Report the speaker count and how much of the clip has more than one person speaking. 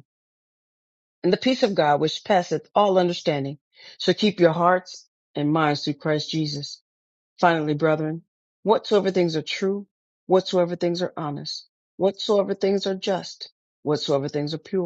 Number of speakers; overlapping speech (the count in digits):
1, no overlap